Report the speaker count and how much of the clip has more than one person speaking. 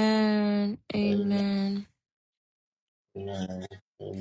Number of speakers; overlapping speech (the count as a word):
two, about 10%